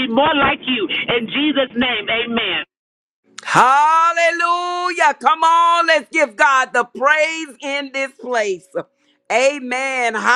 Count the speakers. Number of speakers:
two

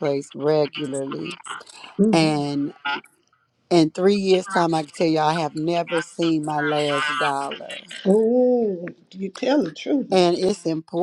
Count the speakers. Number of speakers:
two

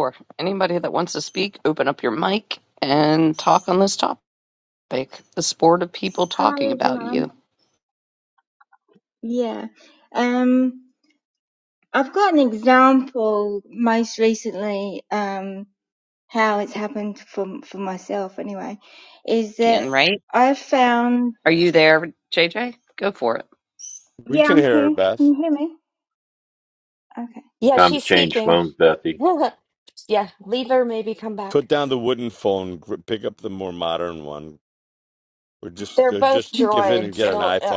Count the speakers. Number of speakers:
five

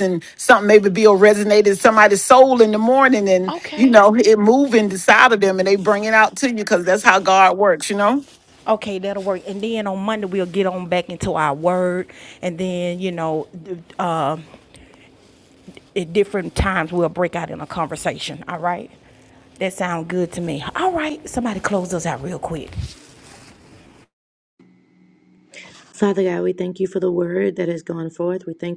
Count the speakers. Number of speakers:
three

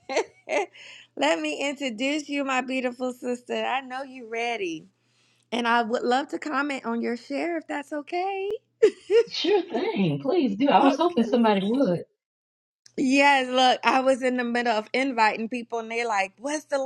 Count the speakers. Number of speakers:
two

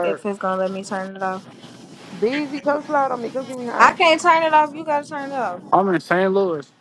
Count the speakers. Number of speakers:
three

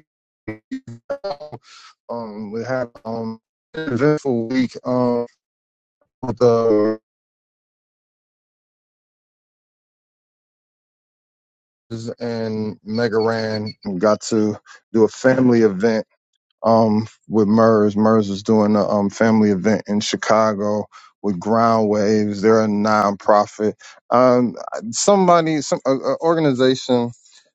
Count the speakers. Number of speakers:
one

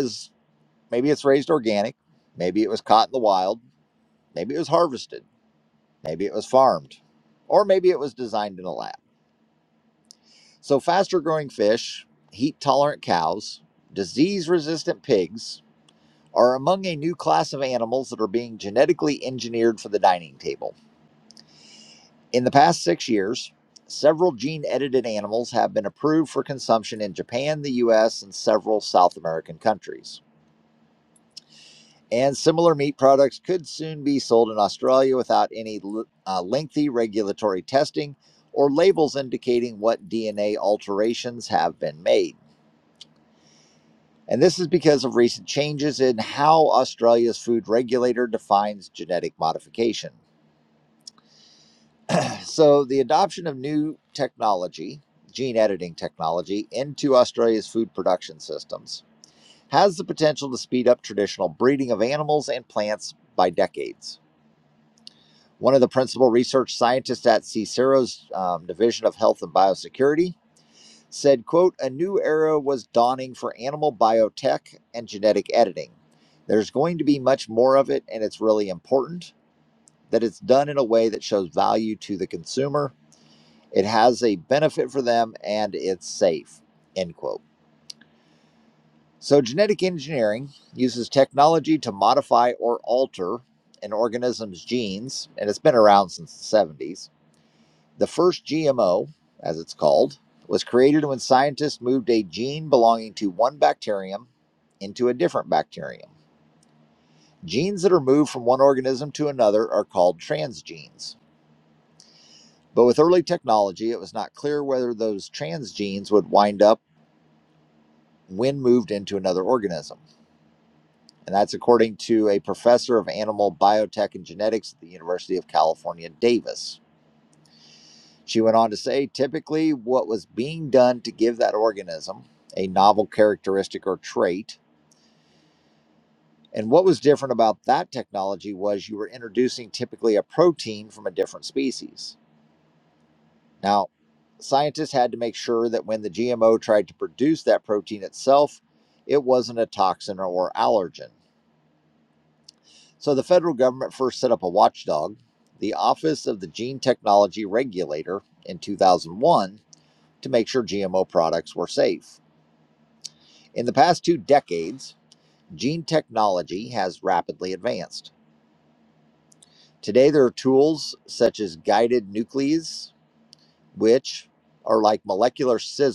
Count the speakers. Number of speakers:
one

